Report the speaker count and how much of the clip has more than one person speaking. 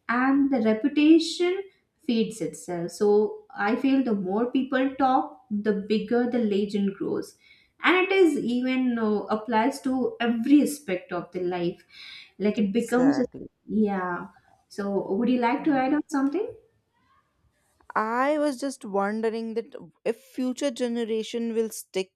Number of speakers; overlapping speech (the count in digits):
2, about 2%